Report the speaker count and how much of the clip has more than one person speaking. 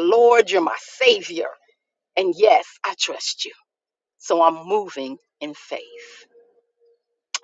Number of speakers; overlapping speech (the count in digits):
1, no overlap